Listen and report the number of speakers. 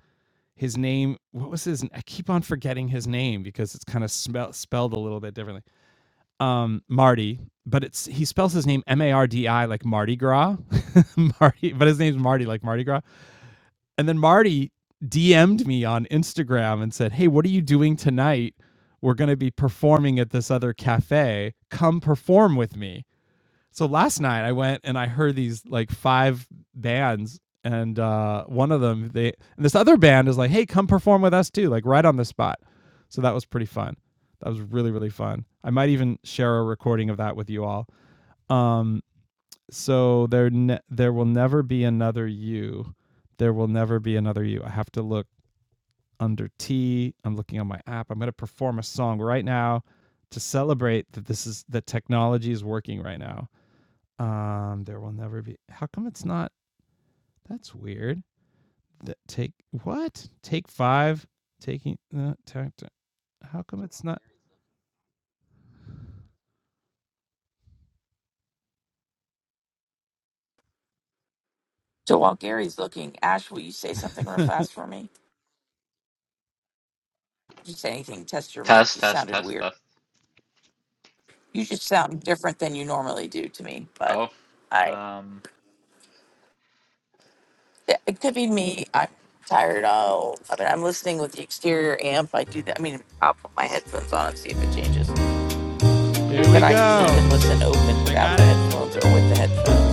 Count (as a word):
three